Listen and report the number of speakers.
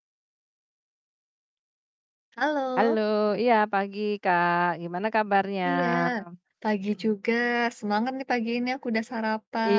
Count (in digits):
2